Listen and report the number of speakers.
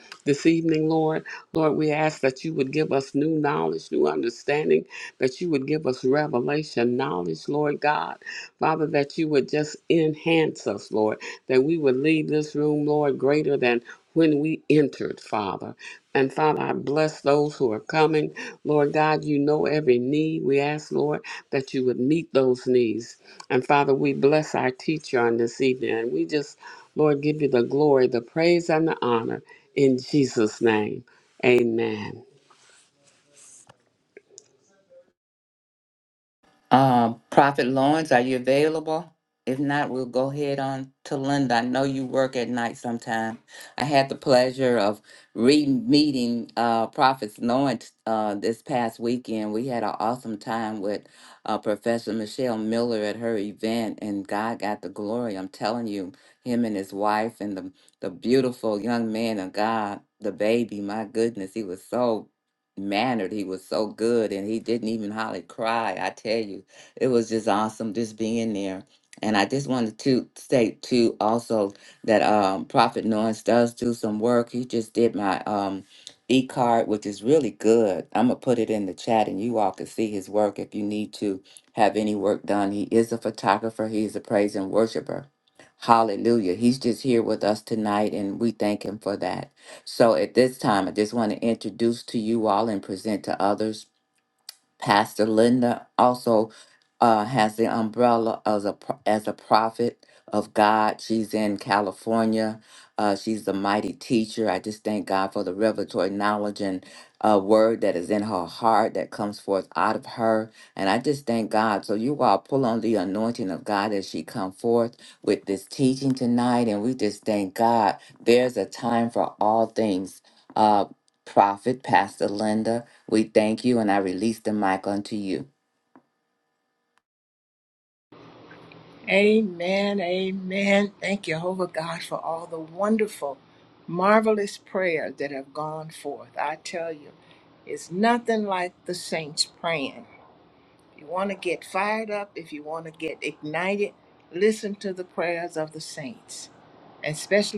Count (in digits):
3